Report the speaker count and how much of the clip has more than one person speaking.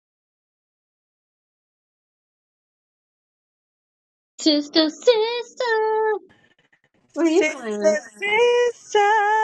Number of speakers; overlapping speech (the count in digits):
2, about 7%